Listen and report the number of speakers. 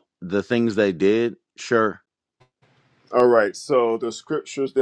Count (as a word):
two